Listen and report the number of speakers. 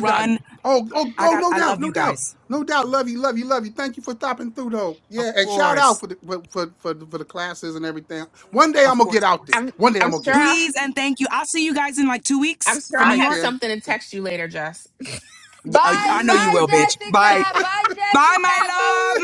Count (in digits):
4